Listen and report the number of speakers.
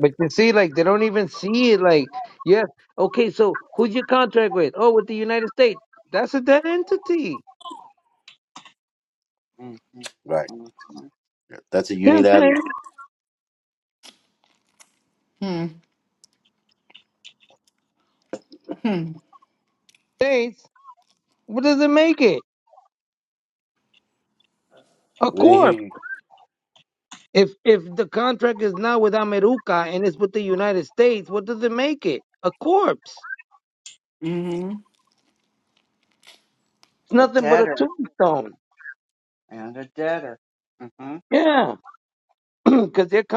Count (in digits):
4